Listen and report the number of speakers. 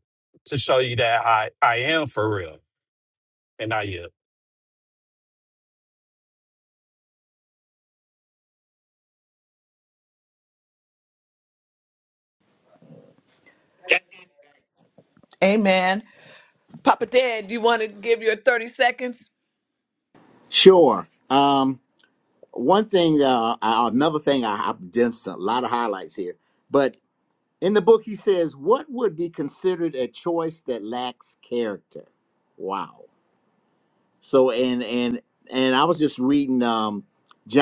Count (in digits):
3